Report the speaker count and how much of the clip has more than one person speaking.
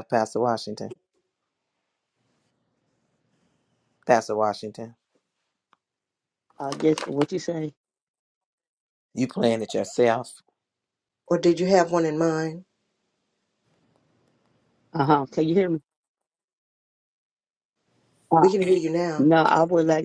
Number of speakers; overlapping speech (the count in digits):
3, about 1%